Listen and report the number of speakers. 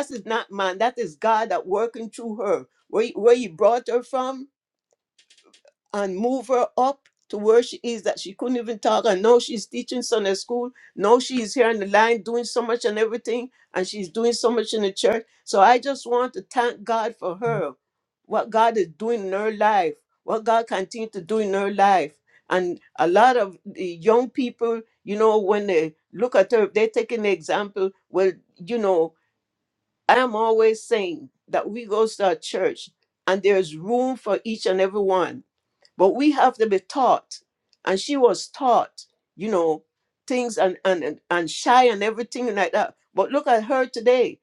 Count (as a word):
one